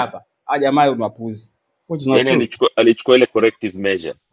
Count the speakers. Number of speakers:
2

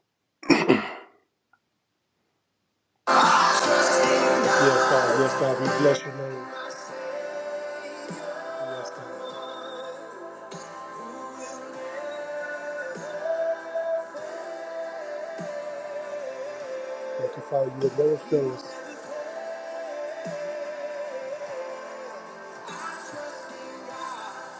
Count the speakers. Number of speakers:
1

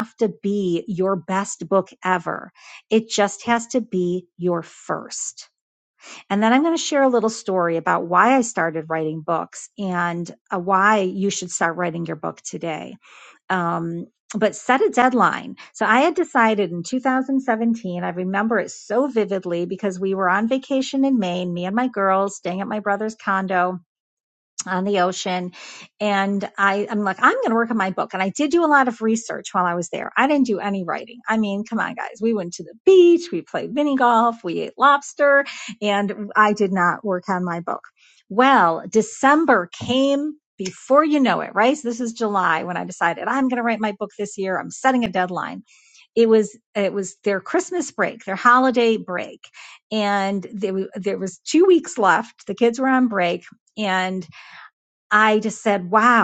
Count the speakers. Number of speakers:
1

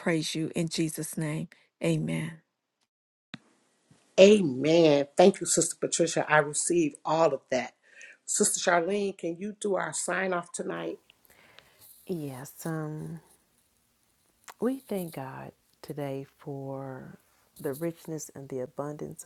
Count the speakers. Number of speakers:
3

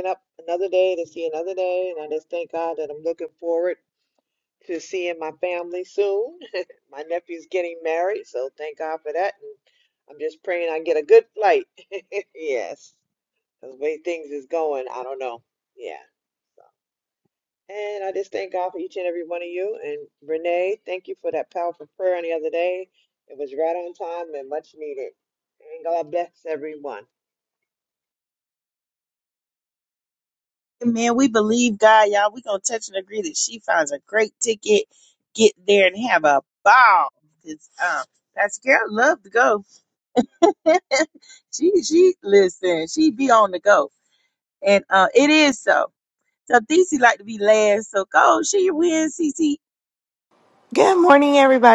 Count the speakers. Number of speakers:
3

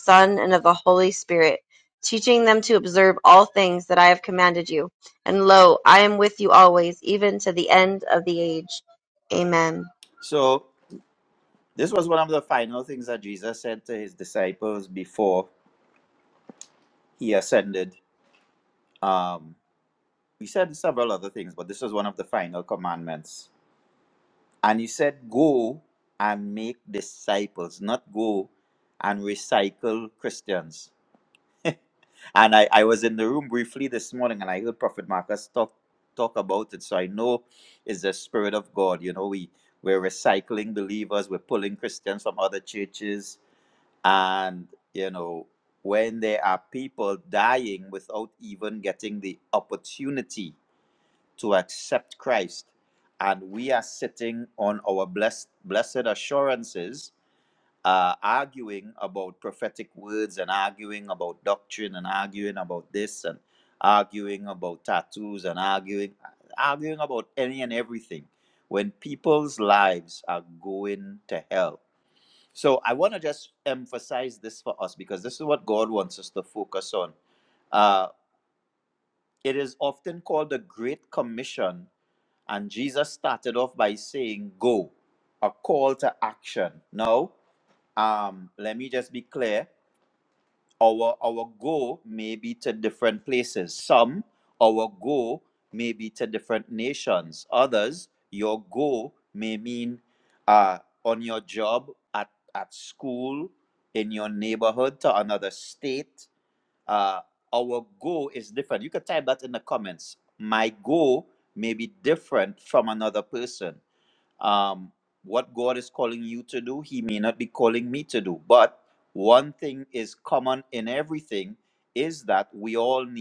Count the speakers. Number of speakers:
2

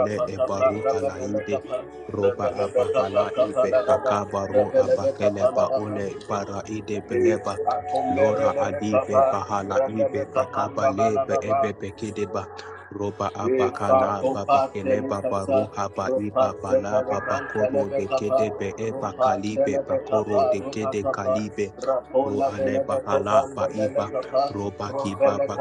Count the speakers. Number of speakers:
2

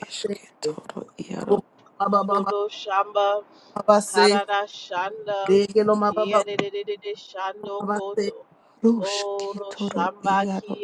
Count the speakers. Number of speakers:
3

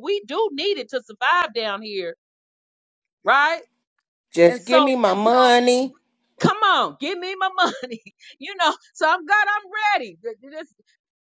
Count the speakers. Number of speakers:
2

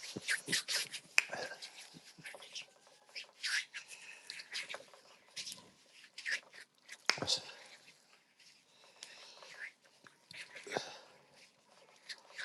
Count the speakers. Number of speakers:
0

